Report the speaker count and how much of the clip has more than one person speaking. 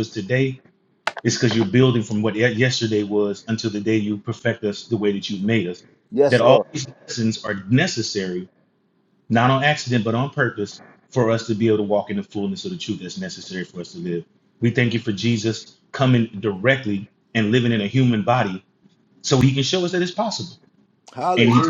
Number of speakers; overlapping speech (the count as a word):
two, about 3%